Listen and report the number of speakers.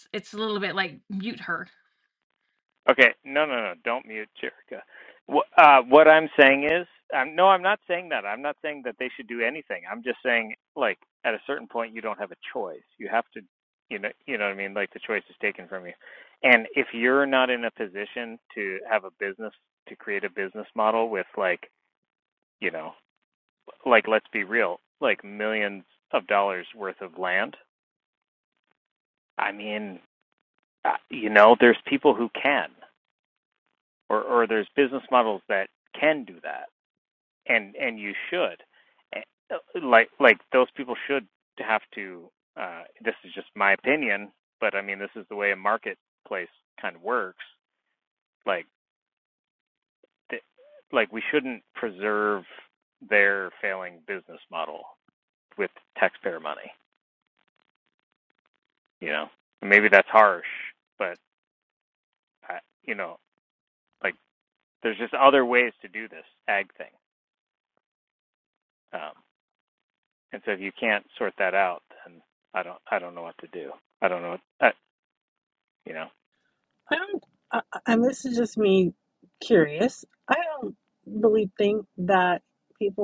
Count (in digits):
3